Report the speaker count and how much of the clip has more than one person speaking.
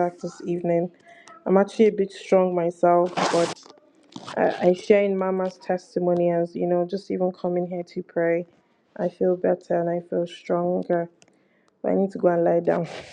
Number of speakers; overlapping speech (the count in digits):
1, no overlap